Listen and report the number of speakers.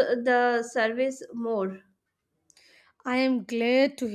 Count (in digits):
2